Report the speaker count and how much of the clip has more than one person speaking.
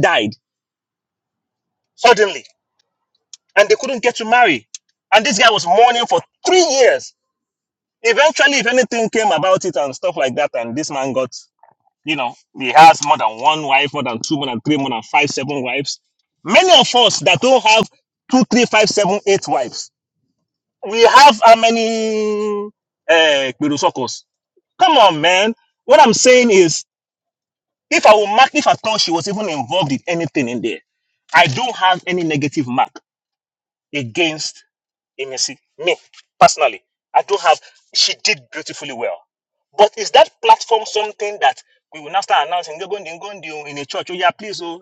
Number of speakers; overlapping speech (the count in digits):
1, no overlap